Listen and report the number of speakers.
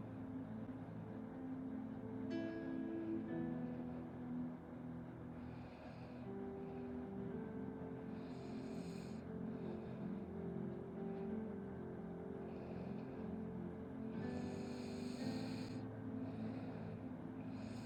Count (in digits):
0